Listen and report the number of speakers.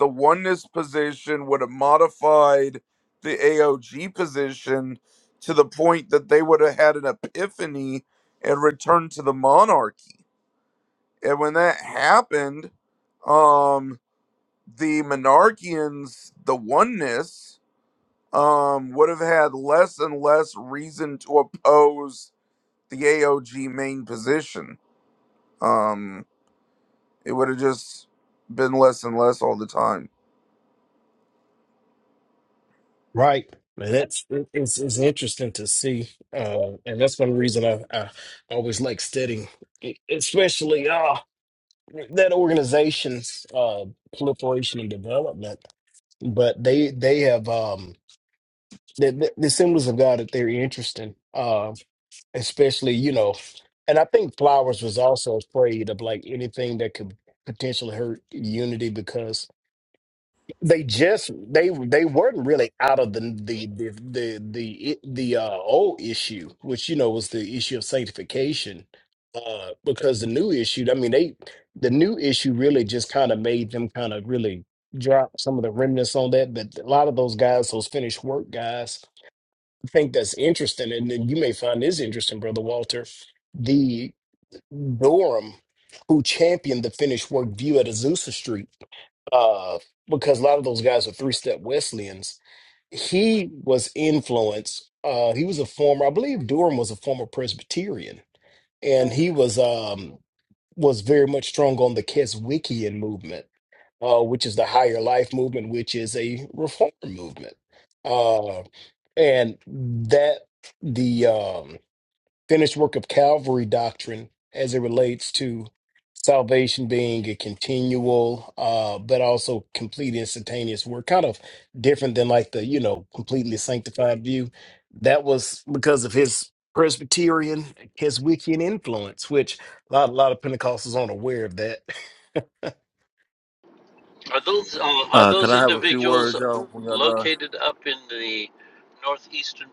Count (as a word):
four